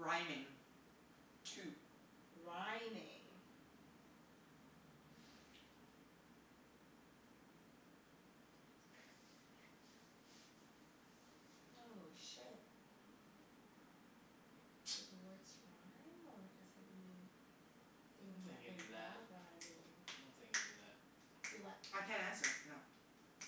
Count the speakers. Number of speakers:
3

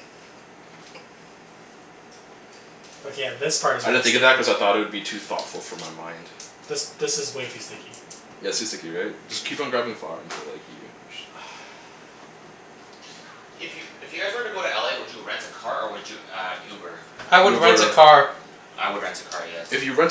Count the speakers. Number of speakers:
4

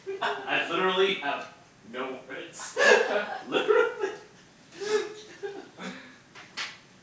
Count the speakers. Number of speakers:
1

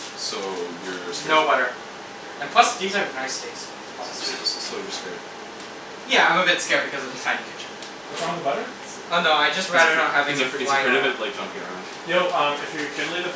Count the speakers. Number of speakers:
3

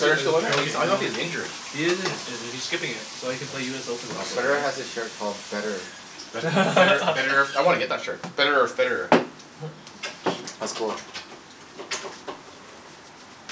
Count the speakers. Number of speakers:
3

